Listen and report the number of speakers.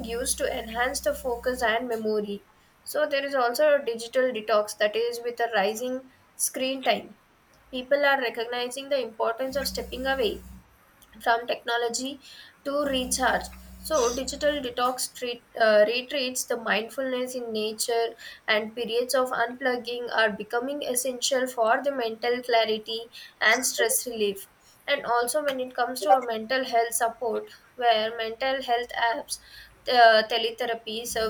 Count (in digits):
1